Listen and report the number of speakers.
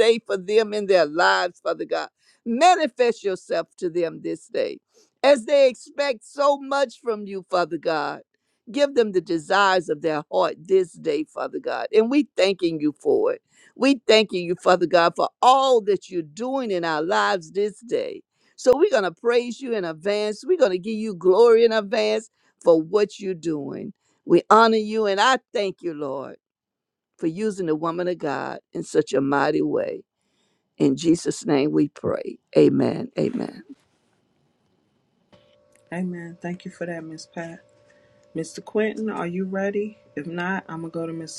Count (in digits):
2